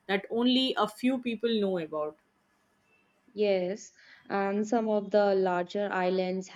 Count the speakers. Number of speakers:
2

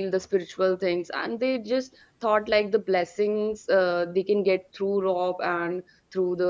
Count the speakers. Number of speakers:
1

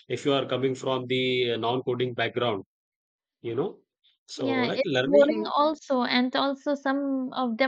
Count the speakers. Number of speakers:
2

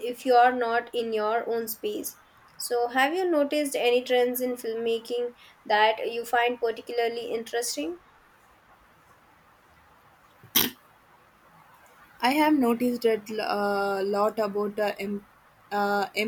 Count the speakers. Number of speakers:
2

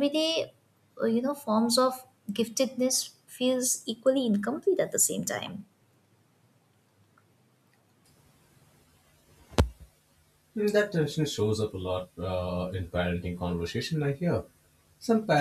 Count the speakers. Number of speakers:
2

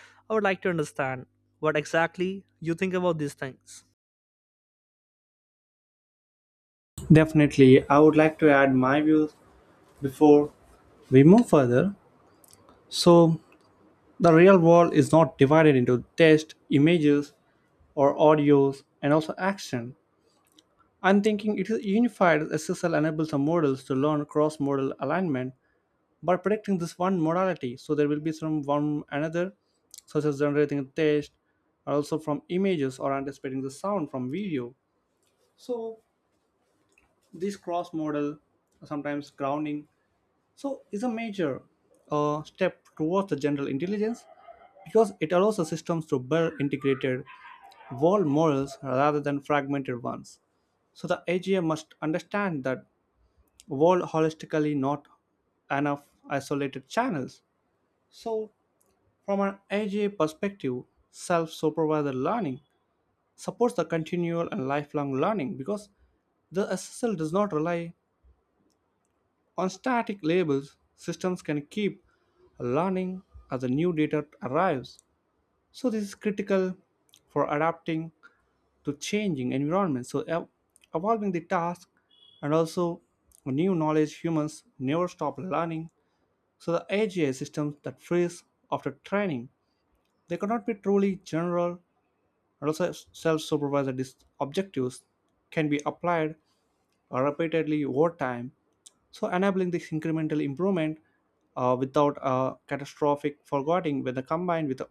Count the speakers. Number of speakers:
2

